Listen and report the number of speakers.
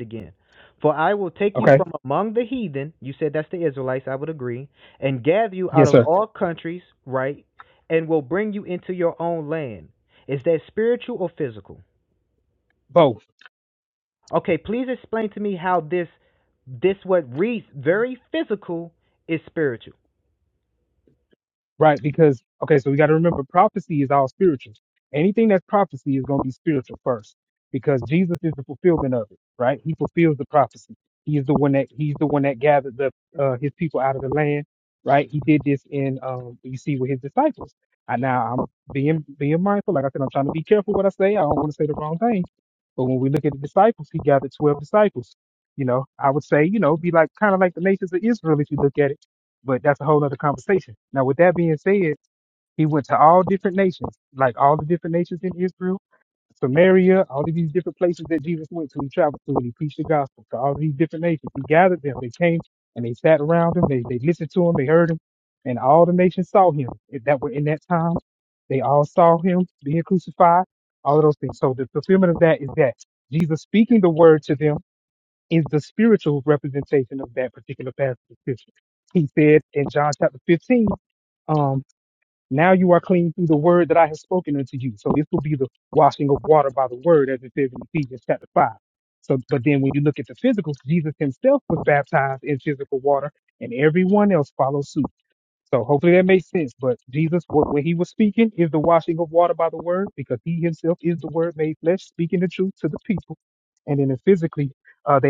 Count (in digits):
2